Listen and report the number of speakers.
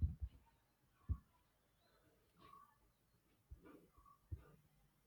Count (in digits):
0